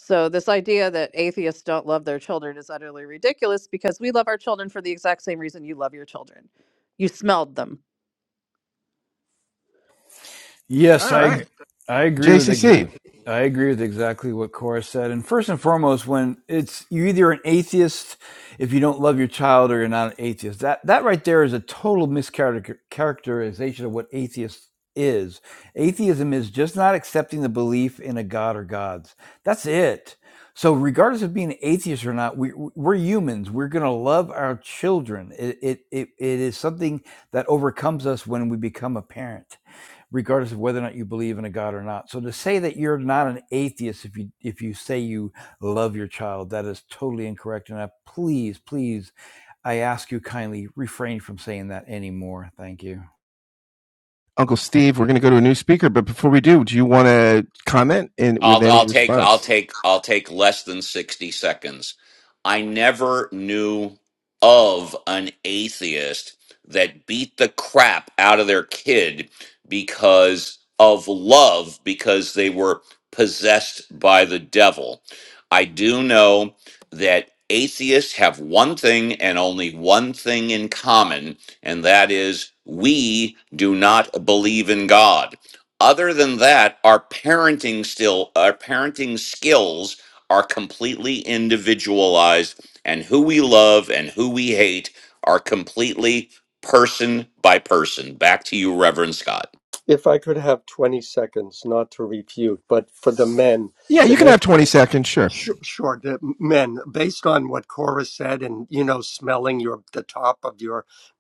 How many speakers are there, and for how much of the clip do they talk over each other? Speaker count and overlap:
five, about 2%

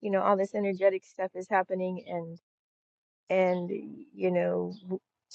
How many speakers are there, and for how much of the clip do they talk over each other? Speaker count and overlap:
one, no overlap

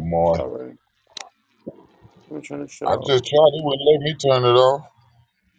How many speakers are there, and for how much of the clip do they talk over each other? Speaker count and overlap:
two, about 6%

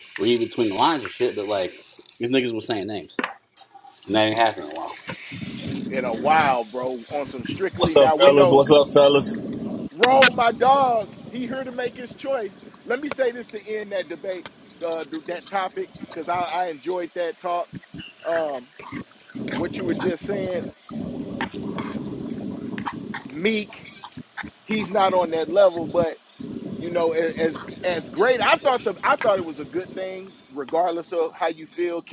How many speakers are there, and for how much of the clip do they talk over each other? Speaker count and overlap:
three, about 3%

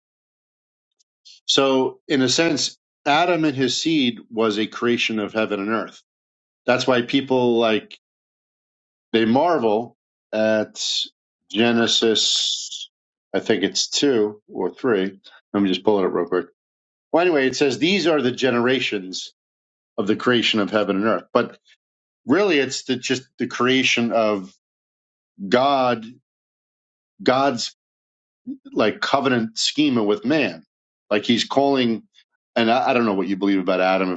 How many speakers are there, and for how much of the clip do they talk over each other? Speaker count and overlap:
one, no overlap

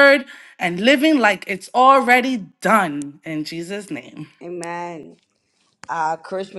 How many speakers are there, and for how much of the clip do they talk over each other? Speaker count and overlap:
two, no overlap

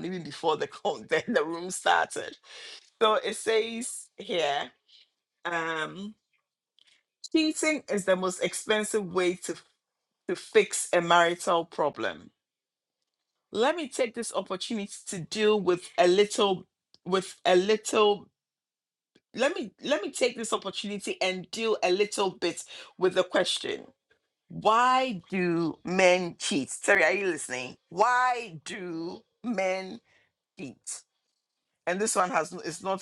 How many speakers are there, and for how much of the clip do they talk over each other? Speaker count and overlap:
one, no overlap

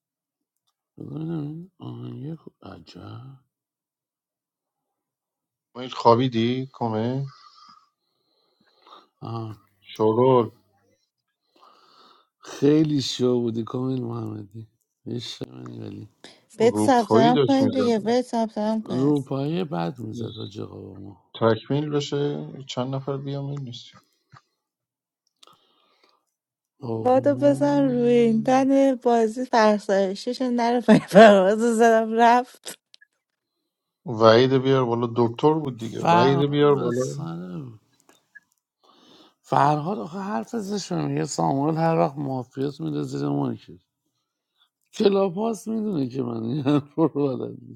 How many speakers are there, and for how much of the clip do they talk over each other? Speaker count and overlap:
three, about 8%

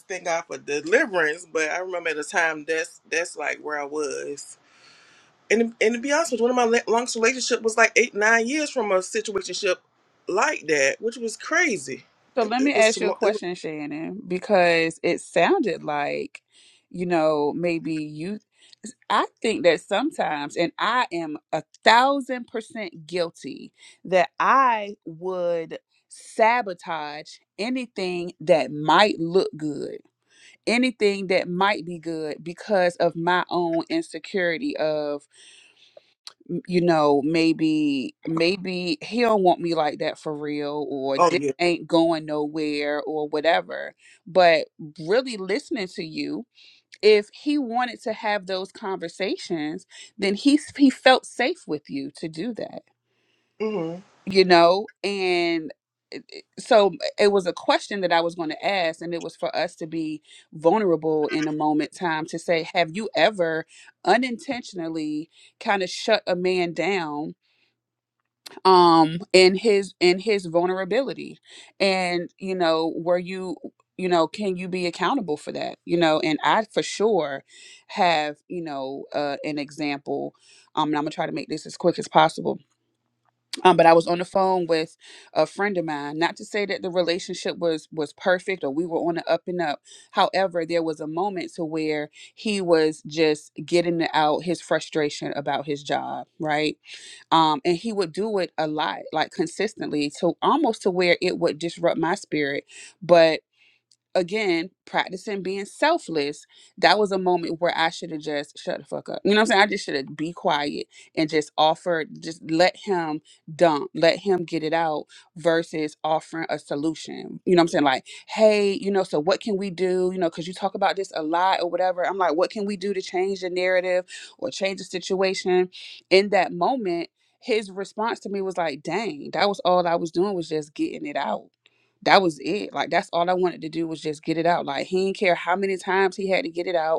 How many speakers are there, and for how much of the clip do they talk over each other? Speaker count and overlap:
two, about 1%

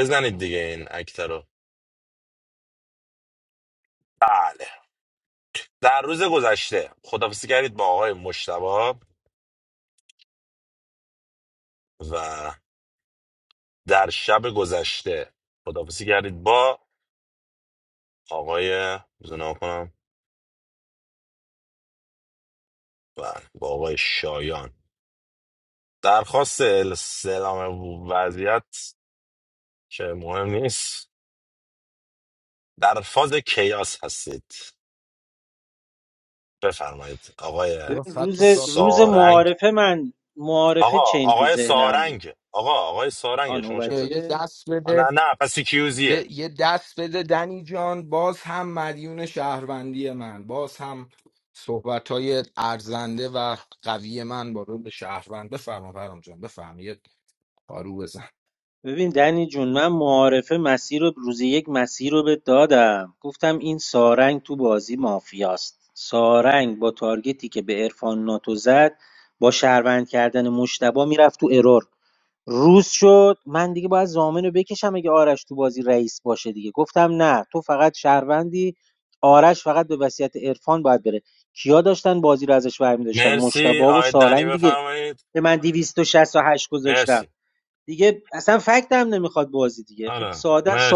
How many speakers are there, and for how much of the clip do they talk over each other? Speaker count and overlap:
three, about 8%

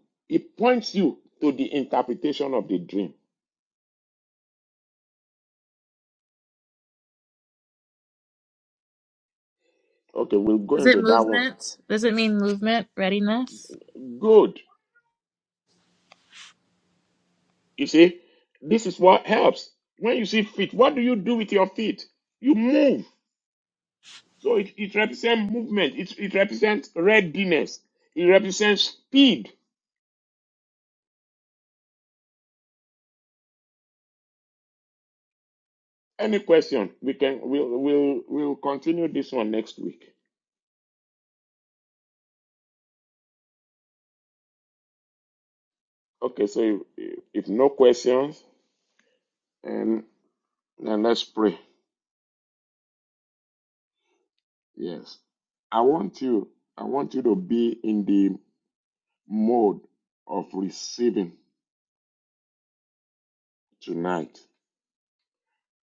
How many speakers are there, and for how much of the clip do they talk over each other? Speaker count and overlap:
two, about 1%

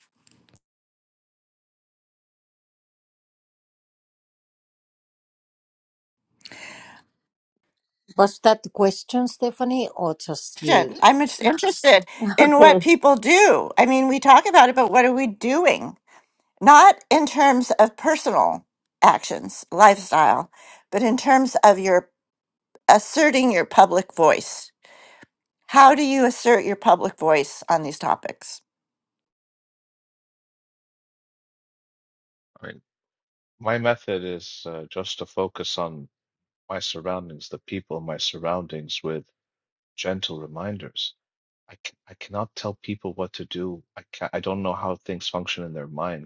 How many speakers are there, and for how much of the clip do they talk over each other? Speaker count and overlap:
three, about 2%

